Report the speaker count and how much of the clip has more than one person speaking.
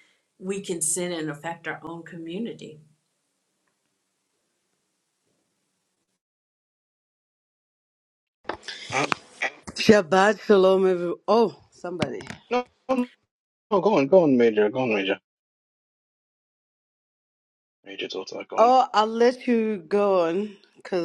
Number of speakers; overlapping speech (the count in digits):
3, about 1%